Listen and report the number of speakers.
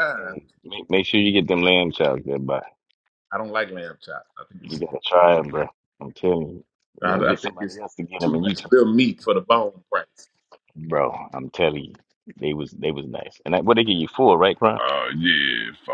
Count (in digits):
3